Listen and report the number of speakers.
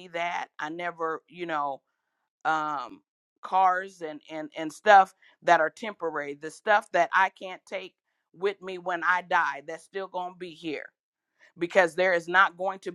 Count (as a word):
one